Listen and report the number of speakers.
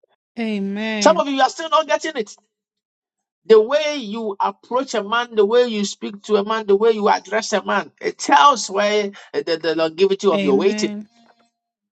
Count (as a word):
two